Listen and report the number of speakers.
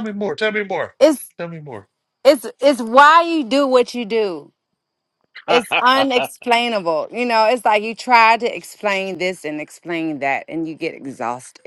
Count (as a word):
two